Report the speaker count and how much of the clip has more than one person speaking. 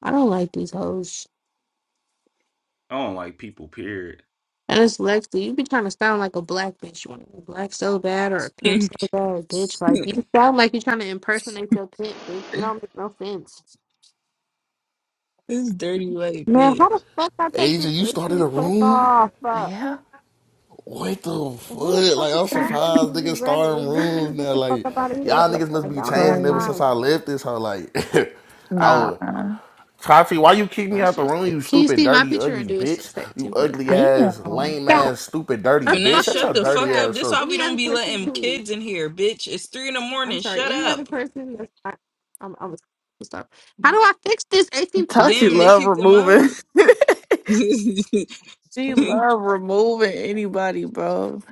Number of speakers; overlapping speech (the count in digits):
5, about 32%